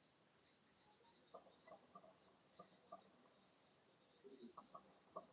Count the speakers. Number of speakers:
zero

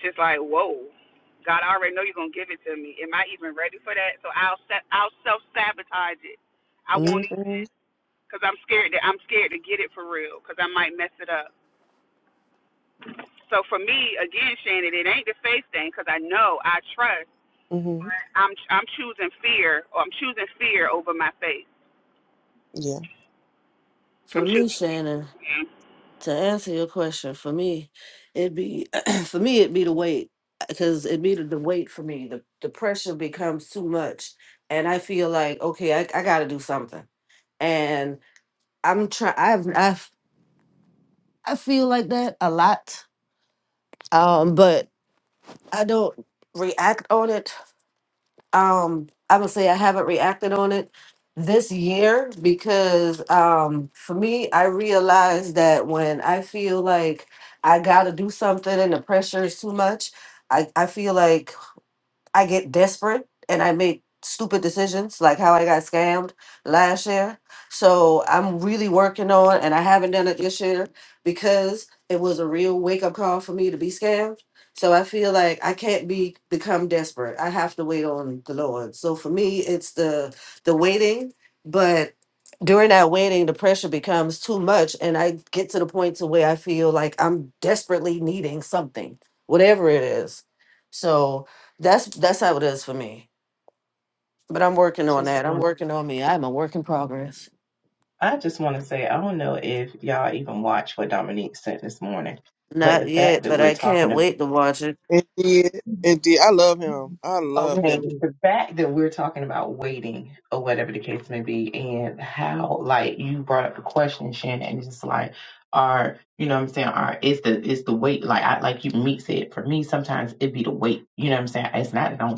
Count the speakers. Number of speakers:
four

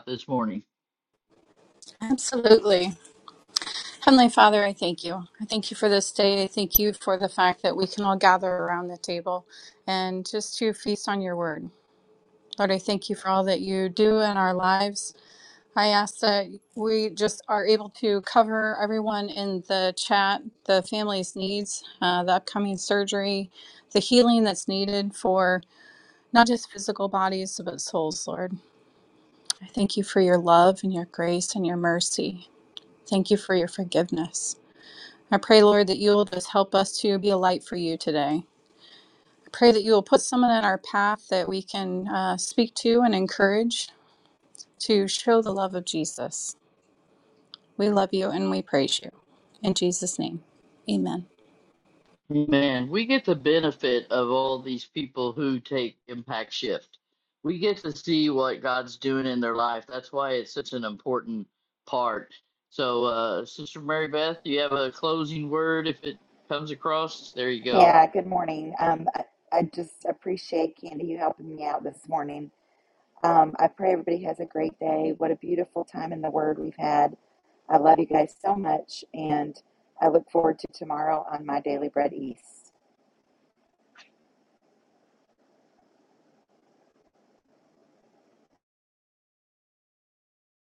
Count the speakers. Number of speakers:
three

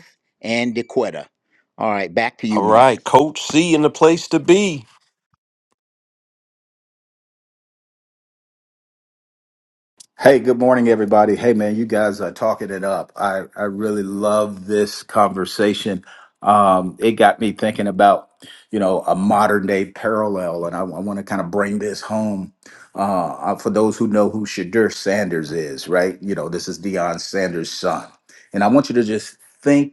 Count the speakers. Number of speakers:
three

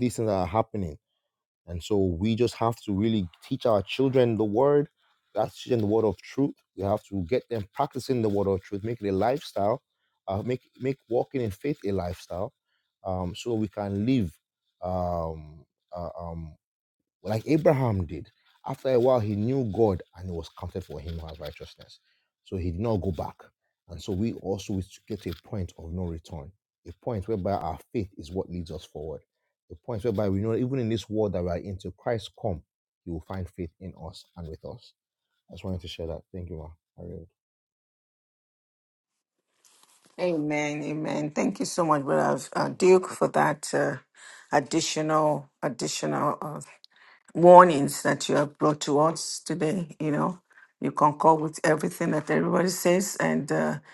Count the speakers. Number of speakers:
two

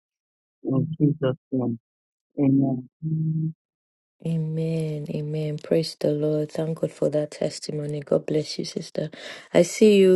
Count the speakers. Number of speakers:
two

